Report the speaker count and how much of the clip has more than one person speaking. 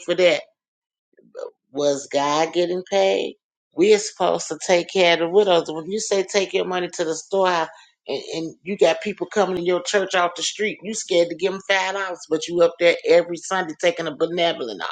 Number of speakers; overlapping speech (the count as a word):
one, no overlap